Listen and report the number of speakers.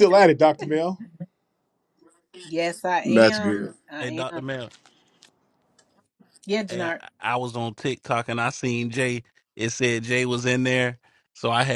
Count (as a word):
three